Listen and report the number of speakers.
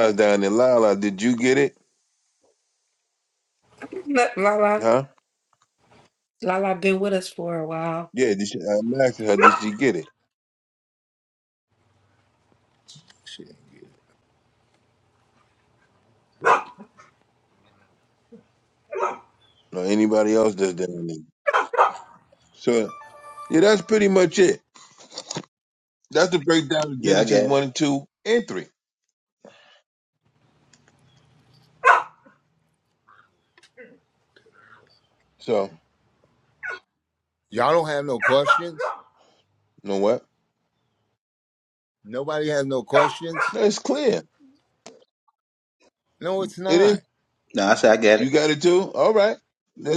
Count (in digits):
4